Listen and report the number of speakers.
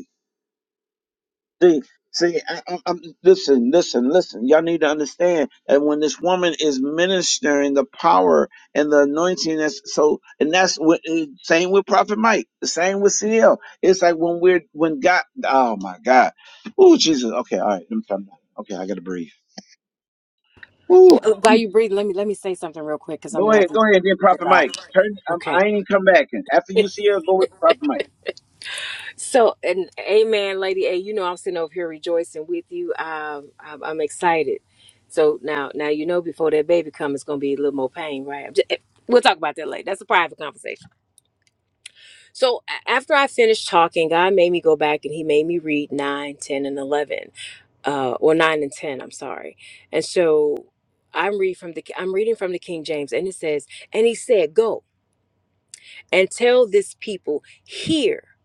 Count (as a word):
two